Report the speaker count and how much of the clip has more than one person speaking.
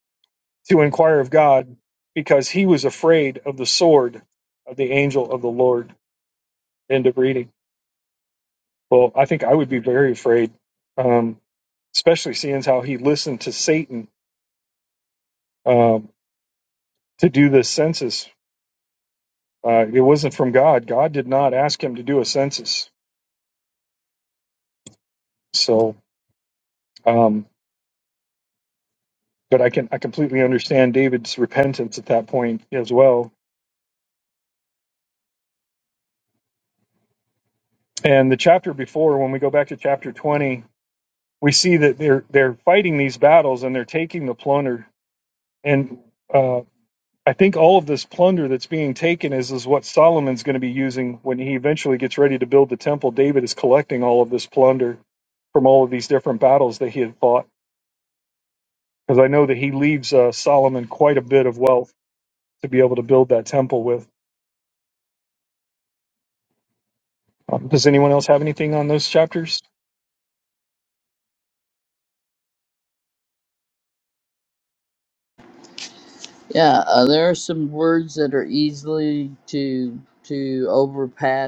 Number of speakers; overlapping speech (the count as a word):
two, no overlap